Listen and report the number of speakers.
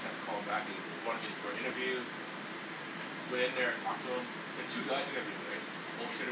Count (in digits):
1